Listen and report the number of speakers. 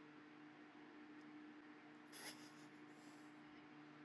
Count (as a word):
zero